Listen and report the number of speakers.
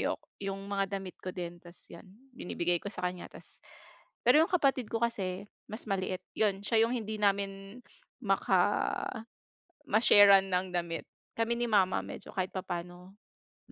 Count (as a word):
one